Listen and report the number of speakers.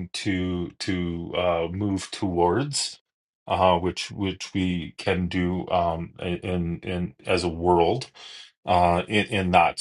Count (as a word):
one